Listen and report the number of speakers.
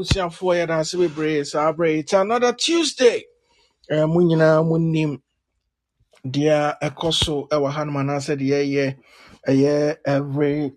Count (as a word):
one